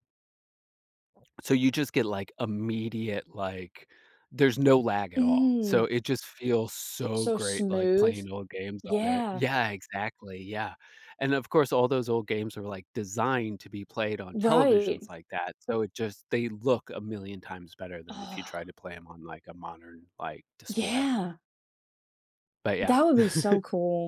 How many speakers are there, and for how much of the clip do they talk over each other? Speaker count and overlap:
2, about 15%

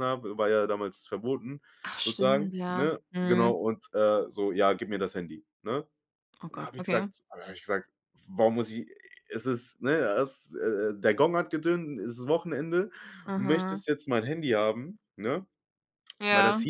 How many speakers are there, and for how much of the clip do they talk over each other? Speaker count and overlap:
2, about 17%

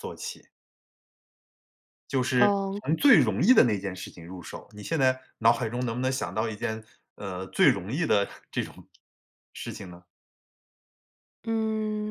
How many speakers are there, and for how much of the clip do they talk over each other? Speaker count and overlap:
2, about 4%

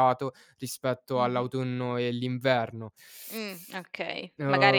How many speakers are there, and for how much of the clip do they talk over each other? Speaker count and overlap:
2, about 15%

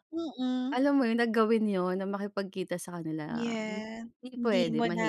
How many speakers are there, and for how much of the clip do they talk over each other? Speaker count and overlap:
2, about 23%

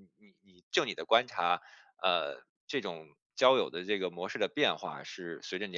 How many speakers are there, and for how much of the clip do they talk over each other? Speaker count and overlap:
1, no overlap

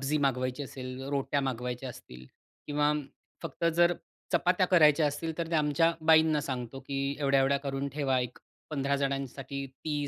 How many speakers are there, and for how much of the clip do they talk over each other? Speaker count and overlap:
1, no overlap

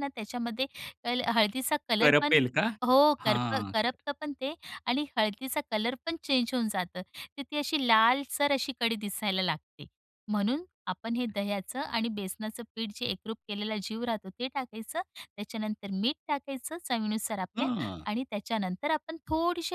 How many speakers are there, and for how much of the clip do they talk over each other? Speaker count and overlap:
2, about 5%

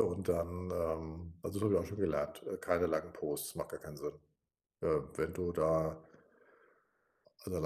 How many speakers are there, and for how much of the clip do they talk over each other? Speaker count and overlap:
1, no overlap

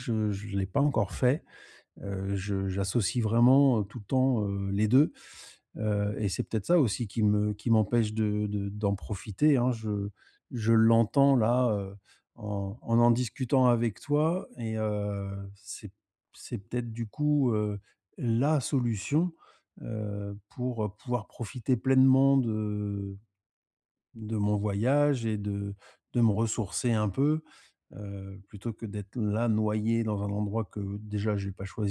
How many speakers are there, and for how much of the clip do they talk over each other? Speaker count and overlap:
1, no overlap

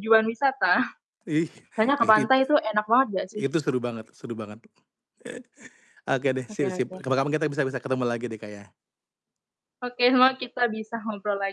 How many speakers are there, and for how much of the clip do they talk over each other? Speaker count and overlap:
2, about 7%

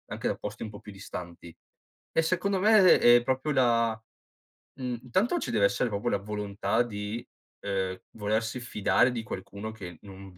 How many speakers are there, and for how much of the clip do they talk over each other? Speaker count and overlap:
1, no overlap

